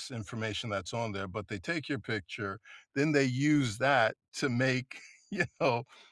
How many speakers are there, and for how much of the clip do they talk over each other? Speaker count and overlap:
1, no overlap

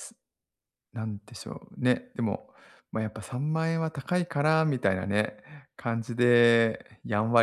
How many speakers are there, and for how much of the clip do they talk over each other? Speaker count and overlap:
1, no overlap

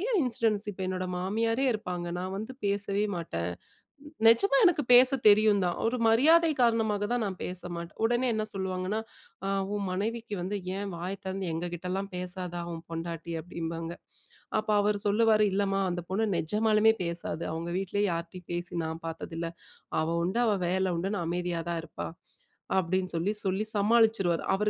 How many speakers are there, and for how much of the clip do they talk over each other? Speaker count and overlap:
1, no overlap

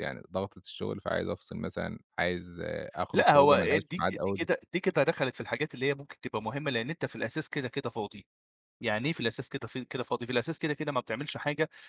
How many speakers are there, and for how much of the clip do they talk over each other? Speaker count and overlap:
2, about 11%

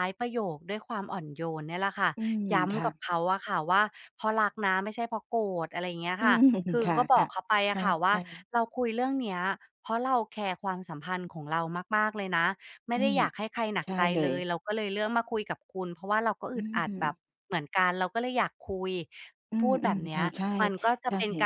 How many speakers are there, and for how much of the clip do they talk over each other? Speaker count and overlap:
2, about 17%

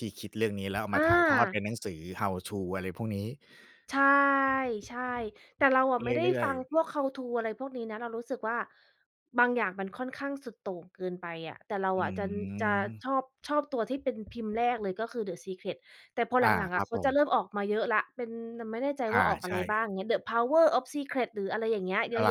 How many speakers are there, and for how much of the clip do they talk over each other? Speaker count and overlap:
2, about 12%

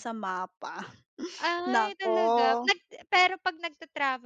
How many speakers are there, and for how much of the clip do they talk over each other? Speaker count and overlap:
2, about 24%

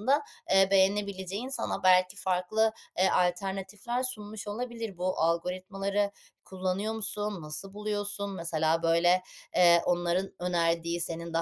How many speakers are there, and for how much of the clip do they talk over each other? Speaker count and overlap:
1, no overlap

